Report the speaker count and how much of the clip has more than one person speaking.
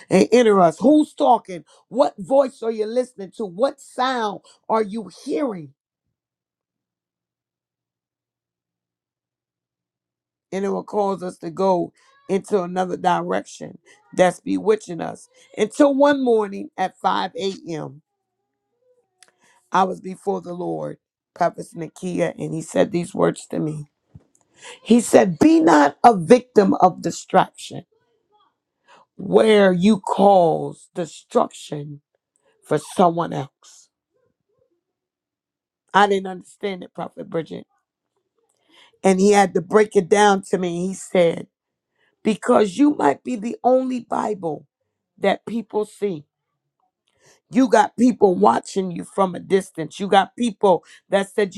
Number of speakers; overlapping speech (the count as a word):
one, no overlap